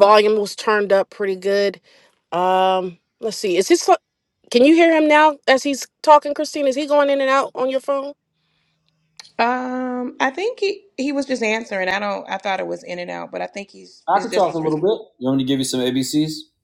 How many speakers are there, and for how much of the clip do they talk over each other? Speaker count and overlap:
3, about 4%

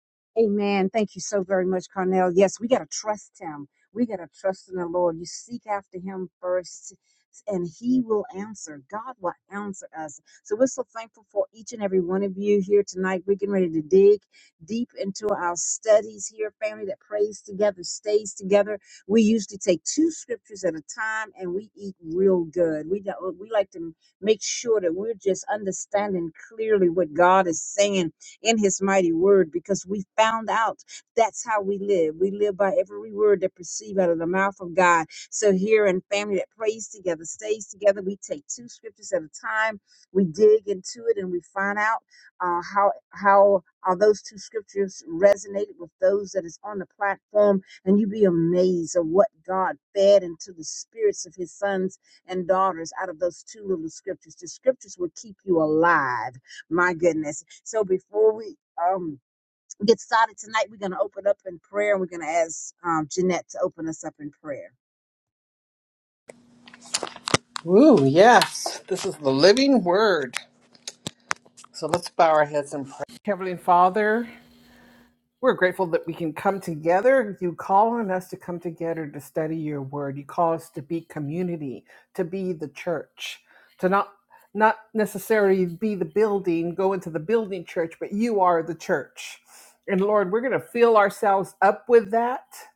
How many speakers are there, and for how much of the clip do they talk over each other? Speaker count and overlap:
2, no overlap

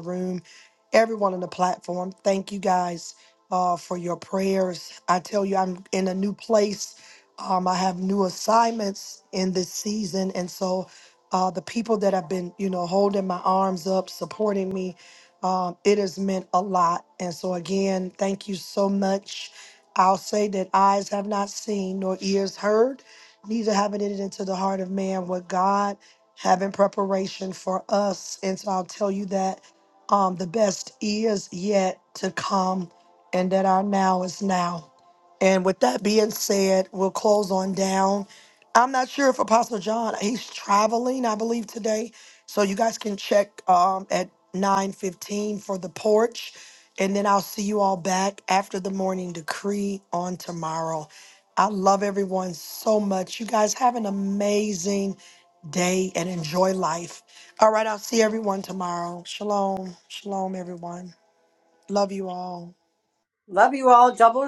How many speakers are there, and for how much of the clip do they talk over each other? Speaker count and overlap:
2, no overlap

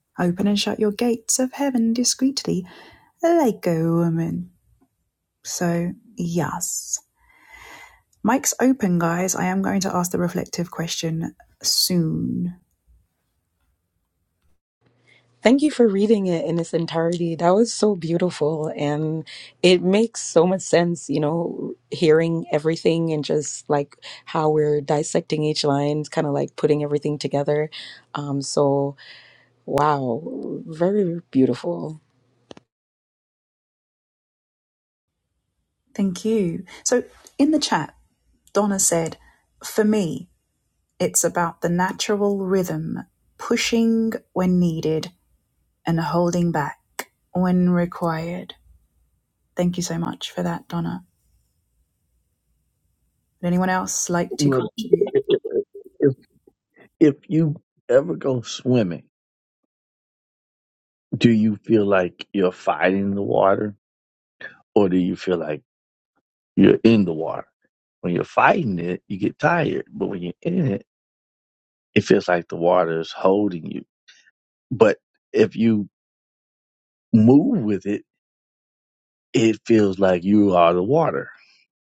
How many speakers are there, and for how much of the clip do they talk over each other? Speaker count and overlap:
3, under 1%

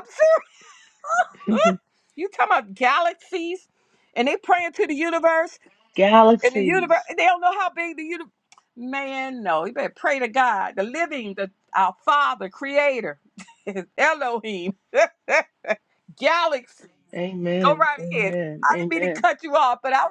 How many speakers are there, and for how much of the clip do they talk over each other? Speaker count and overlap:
2, about 10%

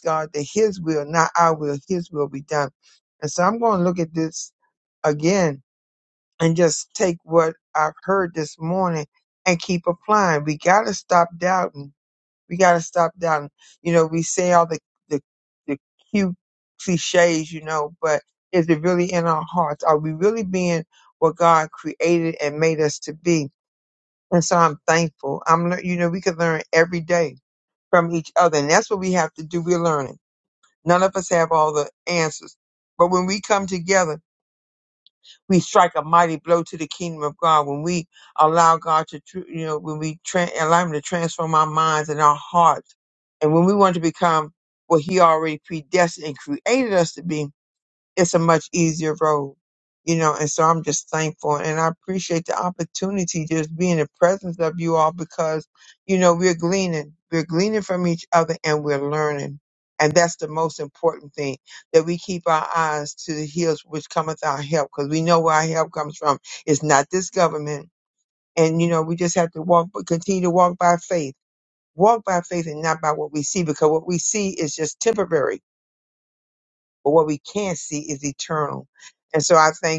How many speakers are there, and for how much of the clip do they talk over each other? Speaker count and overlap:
1, no overlap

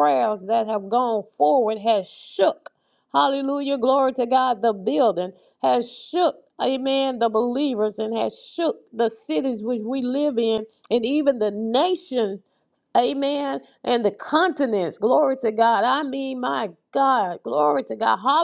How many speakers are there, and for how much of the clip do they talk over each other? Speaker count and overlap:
1, no overlap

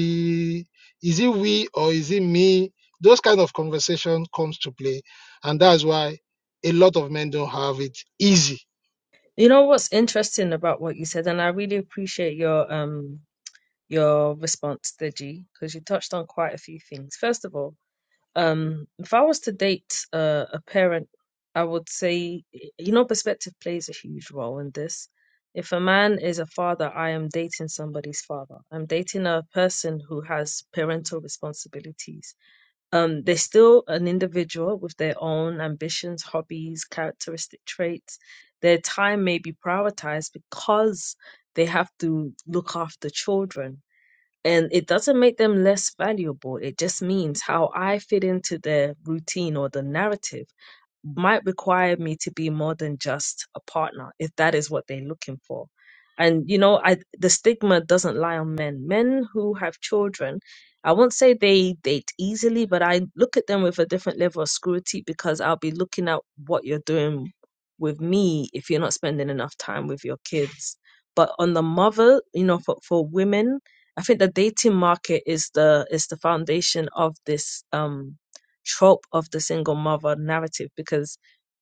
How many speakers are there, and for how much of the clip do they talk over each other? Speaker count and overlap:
2, no overlap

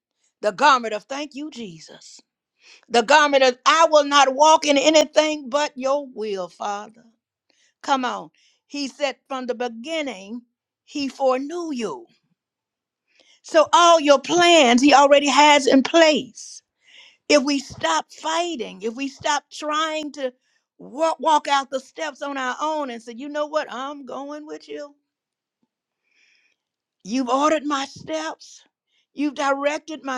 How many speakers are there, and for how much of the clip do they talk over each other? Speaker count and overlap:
1, no overlap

